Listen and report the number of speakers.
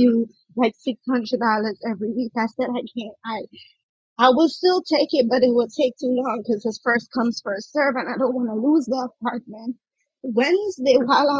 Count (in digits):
1